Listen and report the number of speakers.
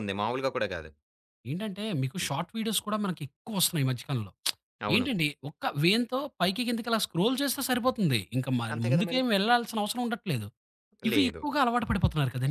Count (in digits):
2